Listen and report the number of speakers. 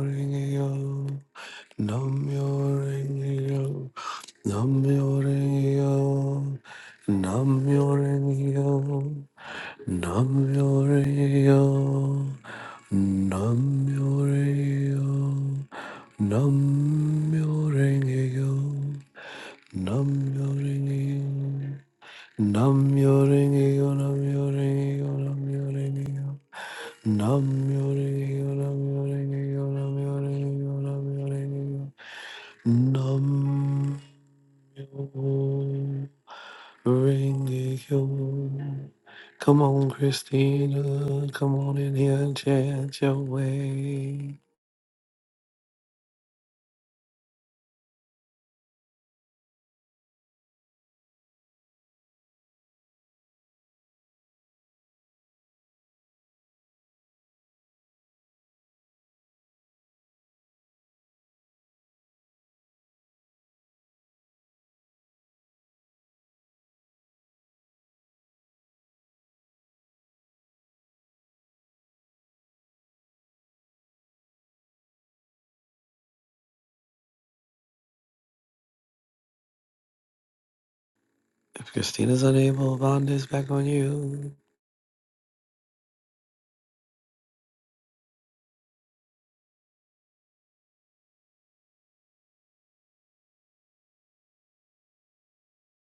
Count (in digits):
1